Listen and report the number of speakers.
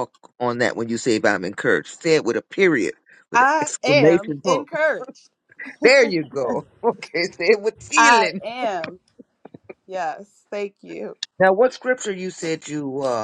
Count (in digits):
2